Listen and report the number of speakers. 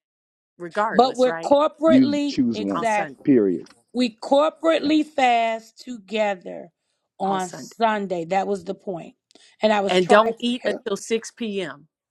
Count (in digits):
3